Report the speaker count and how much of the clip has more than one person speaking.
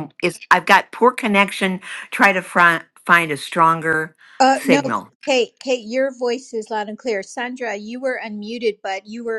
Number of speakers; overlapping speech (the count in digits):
2, about 3%